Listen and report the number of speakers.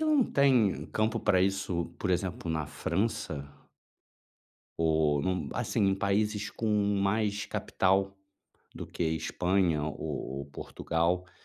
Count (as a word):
one